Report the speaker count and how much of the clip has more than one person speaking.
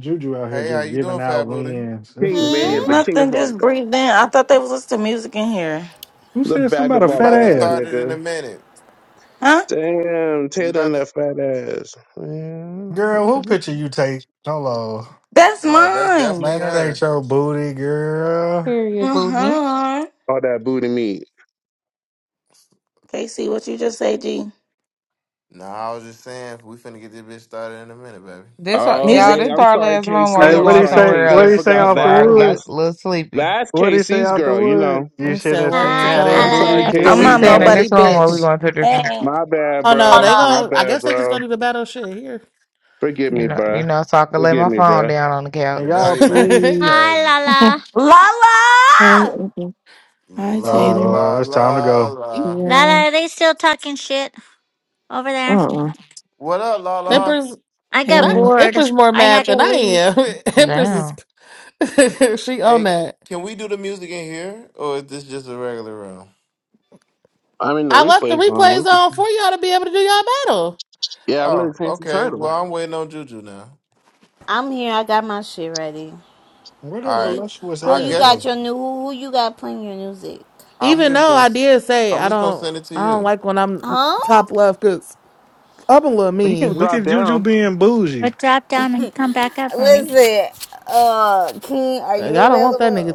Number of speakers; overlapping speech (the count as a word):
nine, about 36%